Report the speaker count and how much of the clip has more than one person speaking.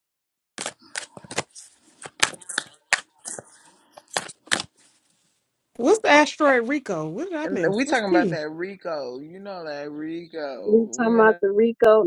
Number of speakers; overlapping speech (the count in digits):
3, about 14%